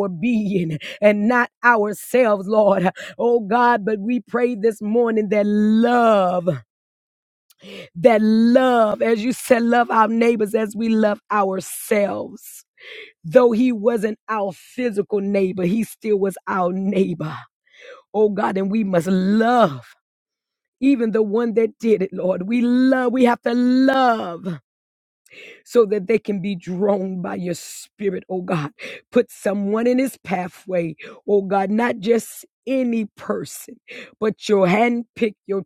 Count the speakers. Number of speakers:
one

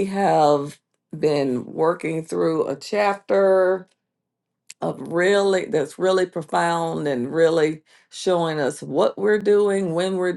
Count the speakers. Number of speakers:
one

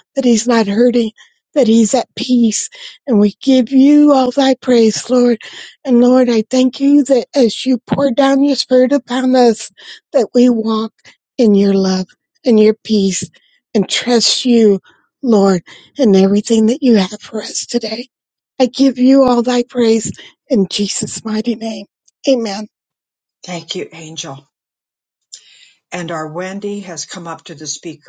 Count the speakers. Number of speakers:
two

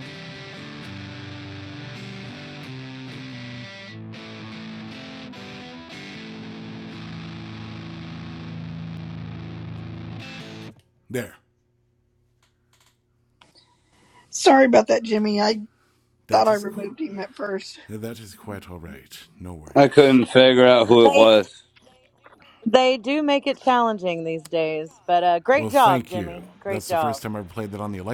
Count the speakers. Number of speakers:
four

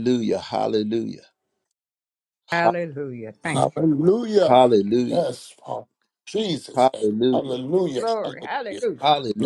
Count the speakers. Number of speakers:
three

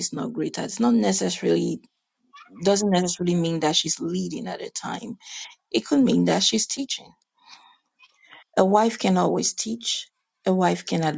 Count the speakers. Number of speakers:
one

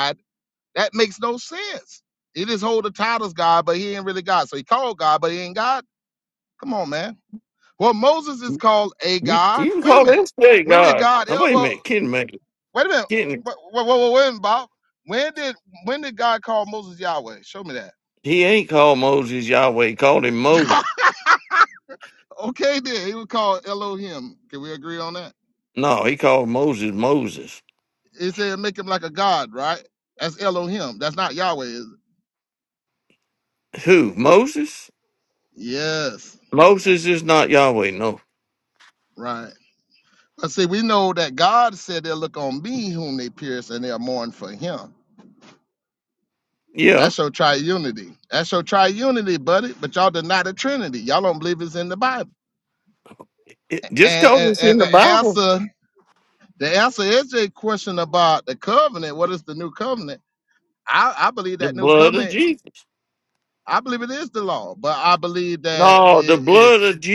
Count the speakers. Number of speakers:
two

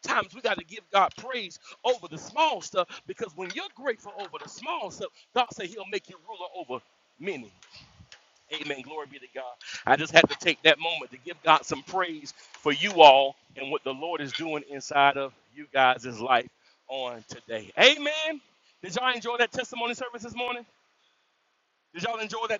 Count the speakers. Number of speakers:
one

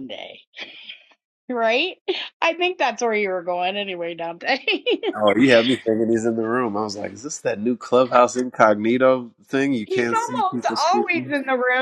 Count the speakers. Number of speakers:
two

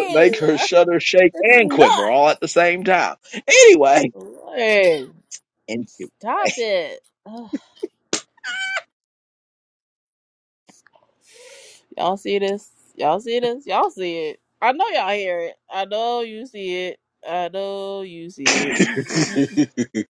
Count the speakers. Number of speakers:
two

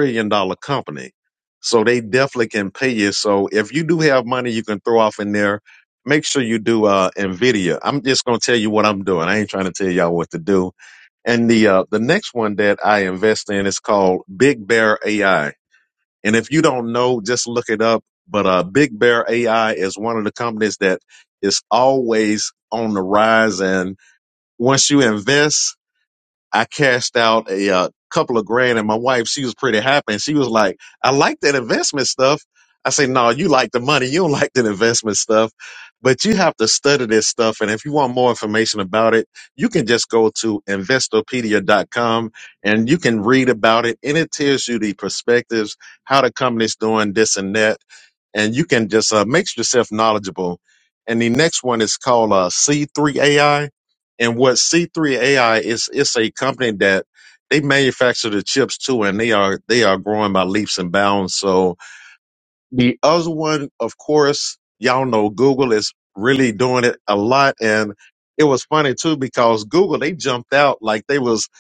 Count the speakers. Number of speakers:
one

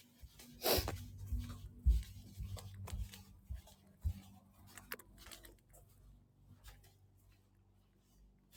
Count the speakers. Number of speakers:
zero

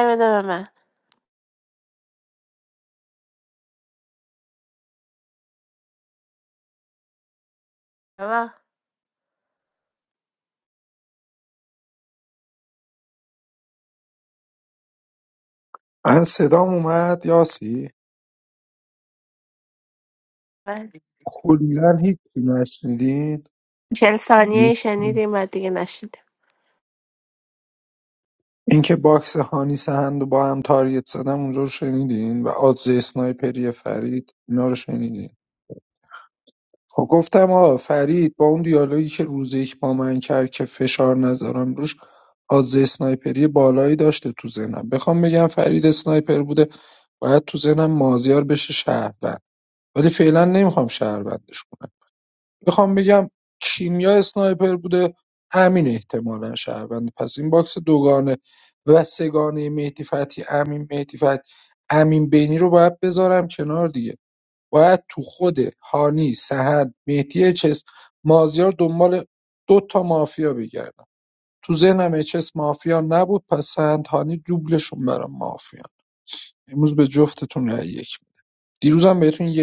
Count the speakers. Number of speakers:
two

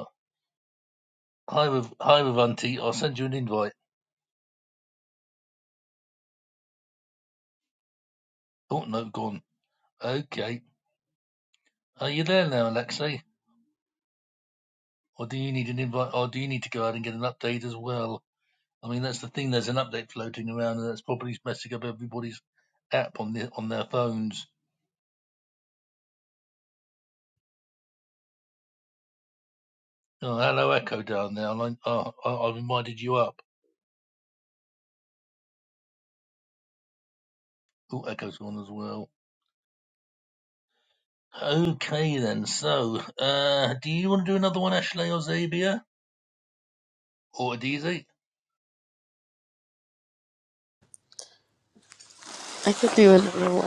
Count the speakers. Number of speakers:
two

